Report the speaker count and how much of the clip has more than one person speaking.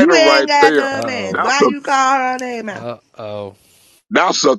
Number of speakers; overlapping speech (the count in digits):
3, about 41%